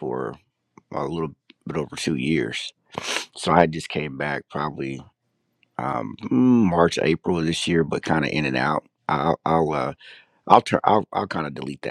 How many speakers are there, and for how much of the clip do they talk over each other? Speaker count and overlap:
one, no overlap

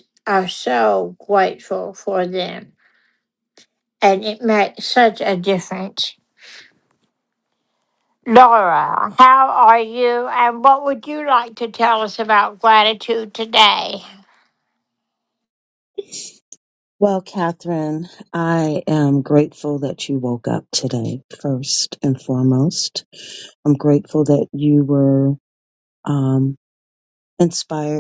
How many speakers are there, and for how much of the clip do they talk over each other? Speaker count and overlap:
two, no overlap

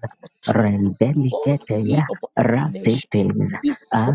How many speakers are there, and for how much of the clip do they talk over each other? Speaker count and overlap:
two, about 25%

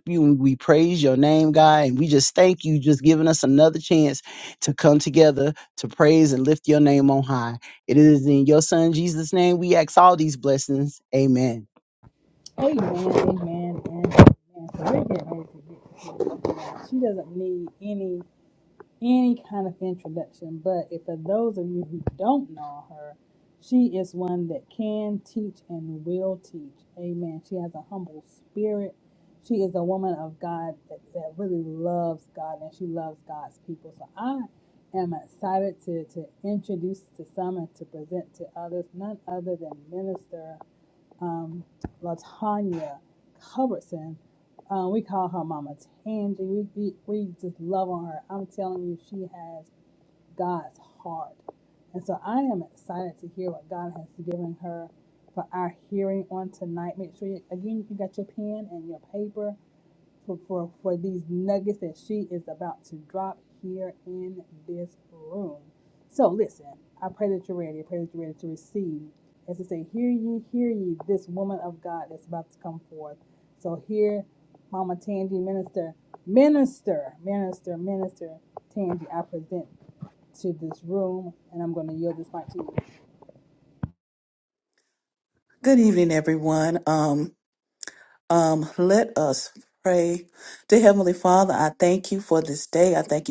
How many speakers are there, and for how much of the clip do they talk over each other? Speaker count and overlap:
three, no overlap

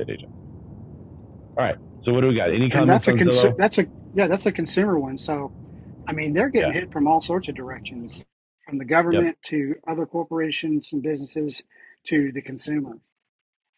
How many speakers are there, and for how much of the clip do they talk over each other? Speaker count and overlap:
two, about 9%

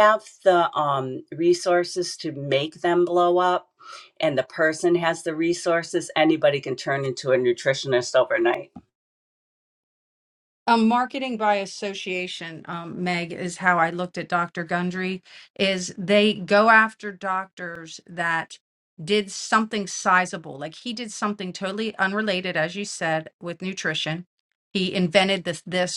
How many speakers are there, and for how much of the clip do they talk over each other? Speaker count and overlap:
two, no overlap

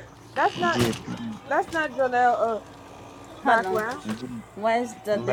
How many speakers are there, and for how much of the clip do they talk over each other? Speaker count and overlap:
three, about 15%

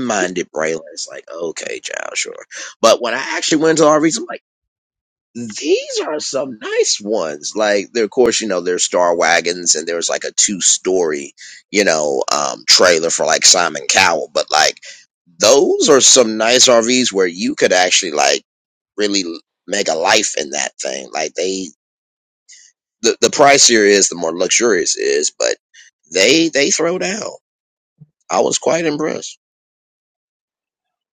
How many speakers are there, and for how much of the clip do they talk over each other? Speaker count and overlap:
one, no overlap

